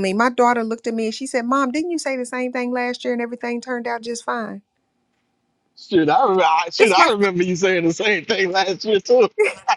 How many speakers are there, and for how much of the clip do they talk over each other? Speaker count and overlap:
2, about 4%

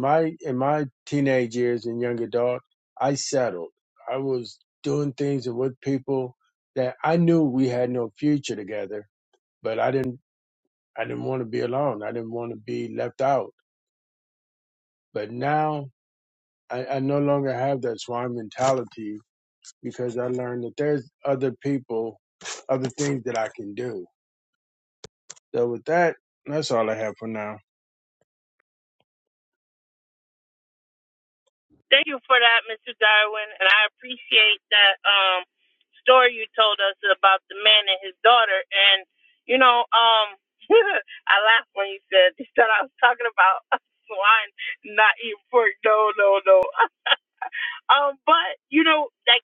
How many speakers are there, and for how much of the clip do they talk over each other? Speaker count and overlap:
2, no overlap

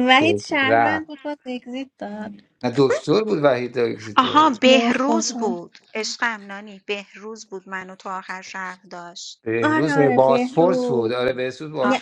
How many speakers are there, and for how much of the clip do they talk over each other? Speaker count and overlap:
3, about 32%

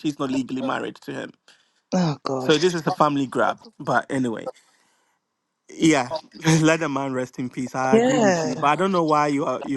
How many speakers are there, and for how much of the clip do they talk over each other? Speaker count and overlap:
2, about 10%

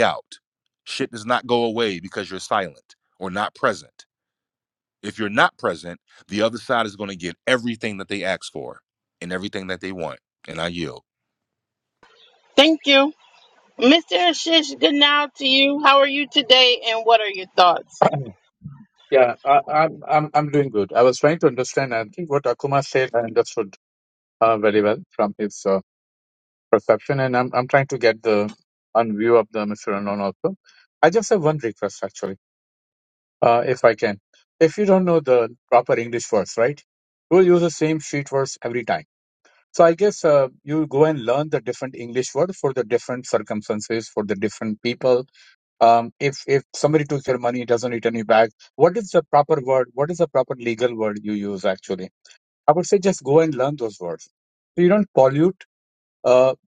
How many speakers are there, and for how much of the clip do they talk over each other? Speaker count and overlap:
3, no overlap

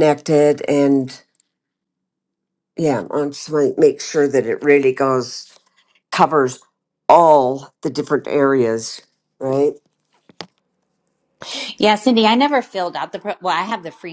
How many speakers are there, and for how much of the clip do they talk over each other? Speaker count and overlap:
2, no overlap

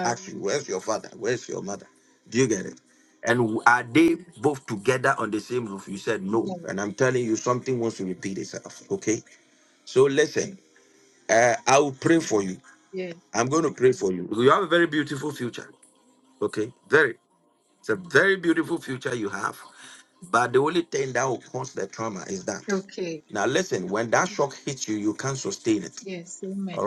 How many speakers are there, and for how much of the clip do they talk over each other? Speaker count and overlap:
2, about 3%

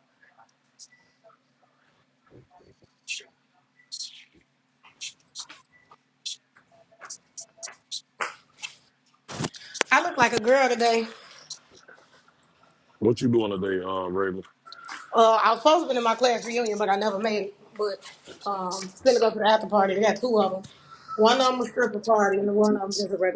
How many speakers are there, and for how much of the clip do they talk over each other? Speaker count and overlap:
2, no overlap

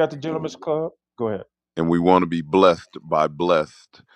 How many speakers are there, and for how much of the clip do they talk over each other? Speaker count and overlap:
2, no overlap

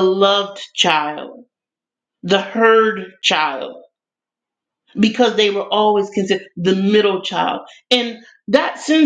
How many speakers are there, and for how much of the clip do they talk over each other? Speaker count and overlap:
1, no overlap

